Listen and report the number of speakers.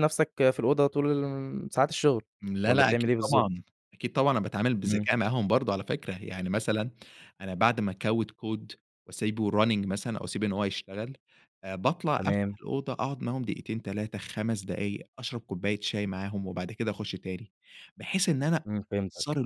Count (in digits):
2